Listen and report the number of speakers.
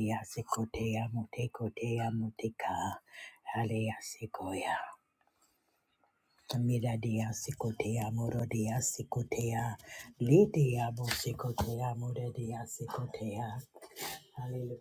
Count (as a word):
one